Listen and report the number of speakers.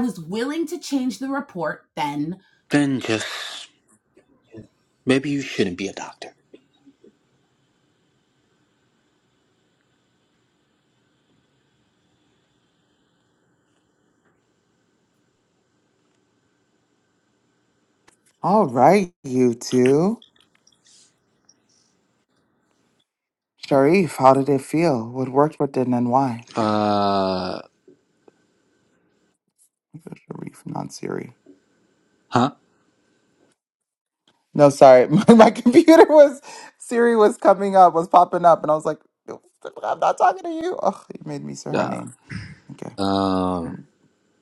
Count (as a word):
three